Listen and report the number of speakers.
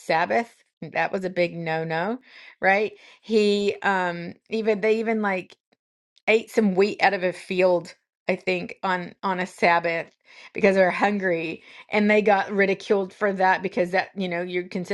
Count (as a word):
one